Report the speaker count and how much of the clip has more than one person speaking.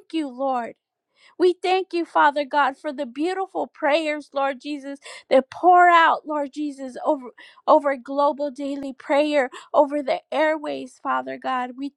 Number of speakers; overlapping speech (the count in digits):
1, no overlap